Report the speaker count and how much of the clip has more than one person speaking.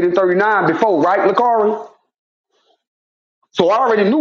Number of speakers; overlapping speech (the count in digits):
1, no overlap